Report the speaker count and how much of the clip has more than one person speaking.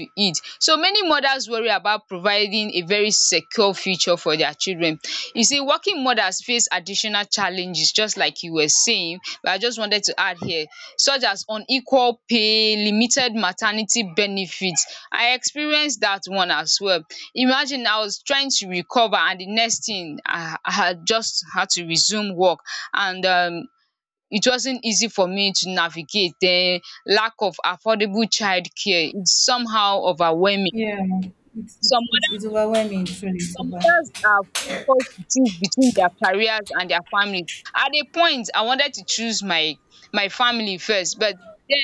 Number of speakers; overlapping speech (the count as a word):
two, about 1%